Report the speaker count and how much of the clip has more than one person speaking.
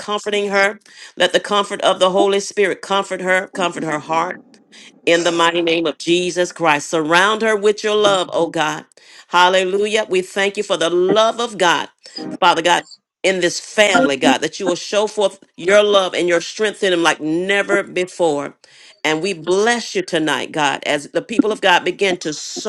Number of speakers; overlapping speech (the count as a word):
one, no overlap